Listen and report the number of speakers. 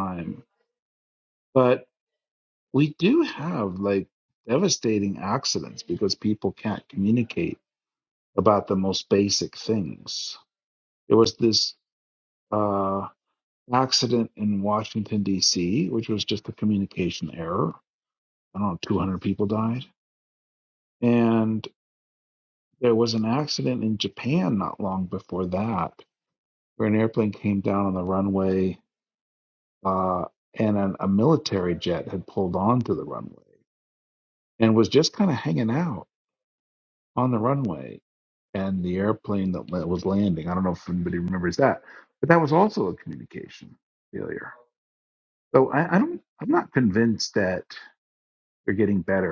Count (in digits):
1